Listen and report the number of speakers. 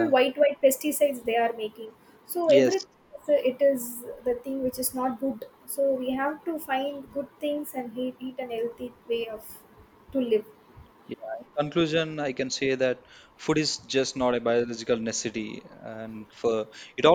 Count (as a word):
two